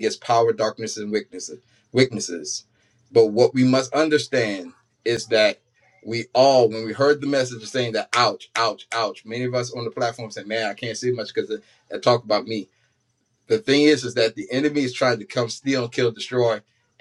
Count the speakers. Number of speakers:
1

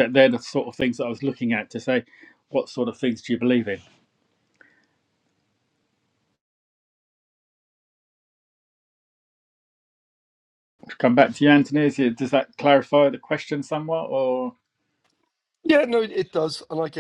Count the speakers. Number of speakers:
2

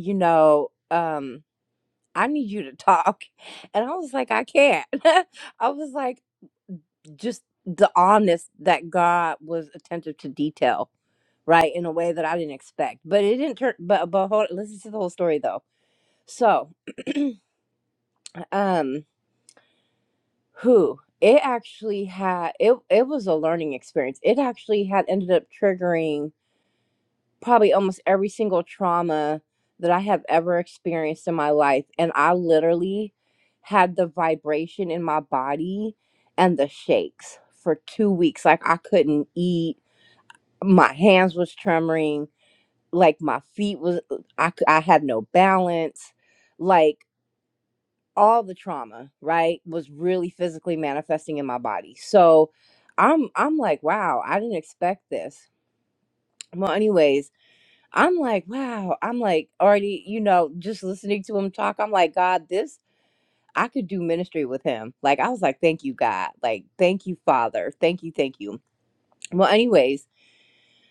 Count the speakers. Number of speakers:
1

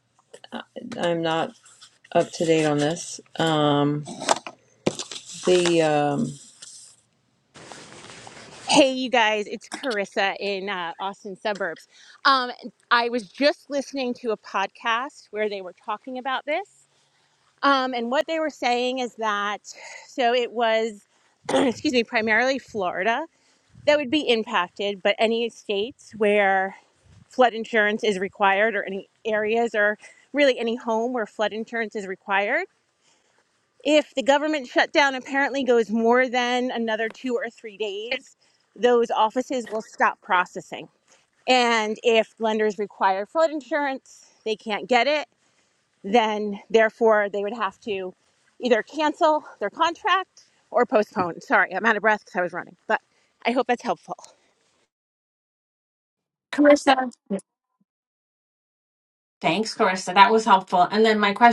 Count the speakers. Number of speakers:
3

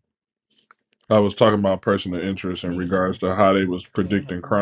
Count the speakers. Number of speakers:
1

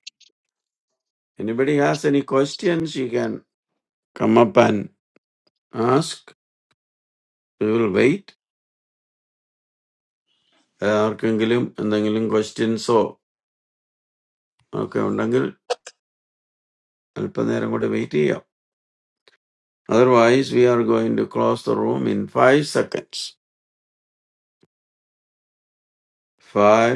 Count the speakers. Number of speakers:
1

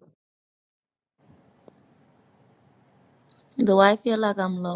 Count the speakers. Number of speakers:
1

